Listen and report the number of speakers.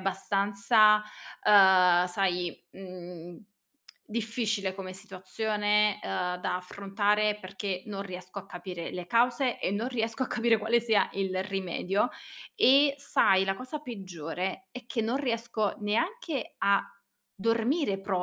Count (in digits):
1